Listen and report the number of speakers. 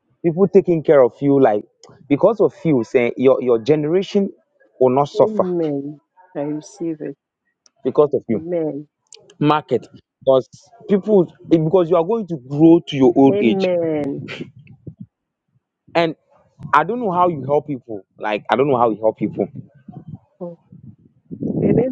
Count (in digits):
2